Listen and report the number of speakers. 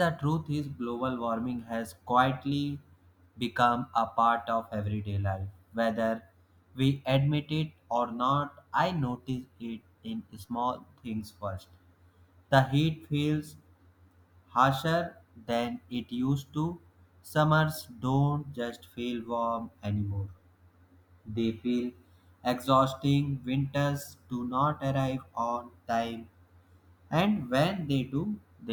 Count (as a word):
one